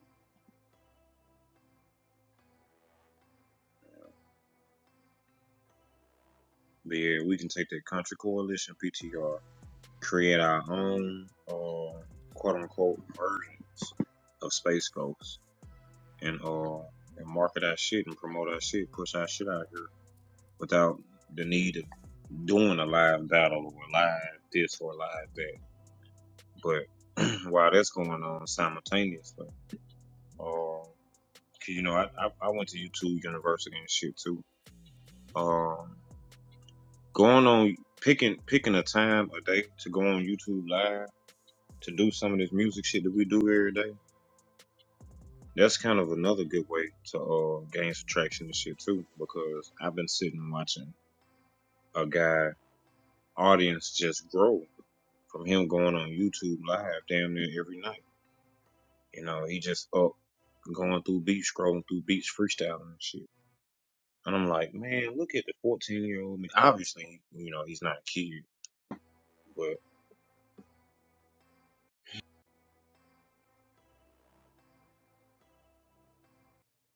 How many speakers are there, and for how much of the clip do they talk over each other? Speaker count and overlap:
one, no overlap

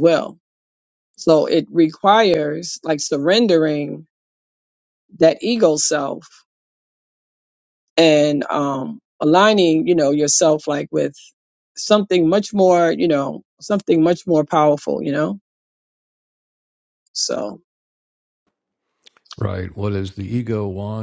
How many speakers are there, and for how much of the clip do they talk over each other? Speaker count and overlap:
two, no overlap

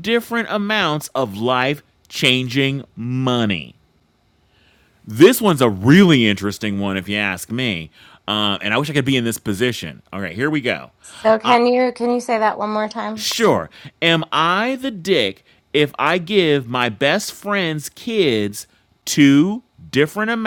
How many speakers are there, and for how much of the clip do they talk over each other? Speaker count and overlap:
two, about 2%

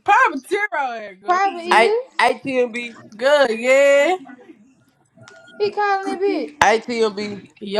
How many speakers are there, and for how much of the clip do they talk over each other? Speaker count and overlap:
three, about 6%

